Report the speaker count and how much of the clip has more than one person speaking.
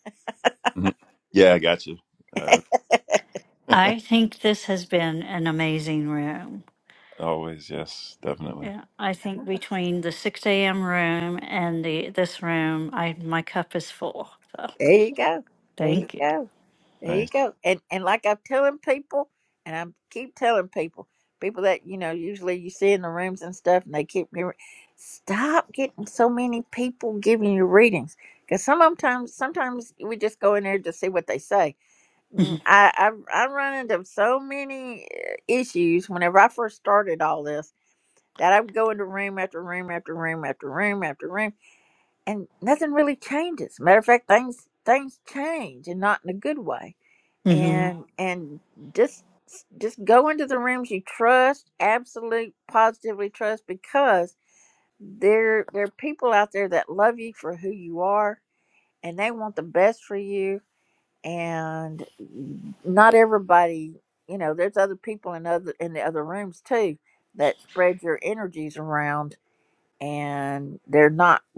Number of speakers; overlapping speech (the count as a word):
three, about 1%